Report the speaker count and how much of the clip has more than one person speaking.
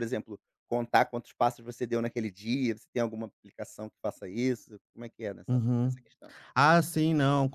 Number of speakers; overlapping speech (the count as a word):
two, about 5%